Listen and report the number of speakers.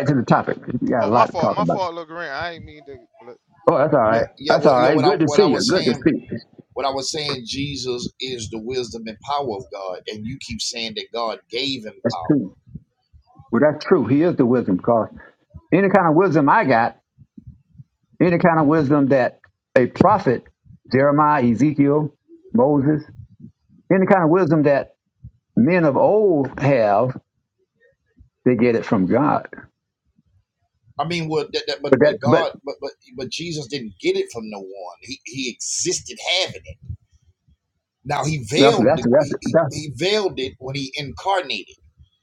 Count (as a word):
three